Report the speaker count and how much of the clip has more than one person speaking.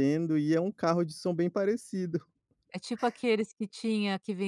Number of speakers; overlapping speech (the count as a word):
two, no overlap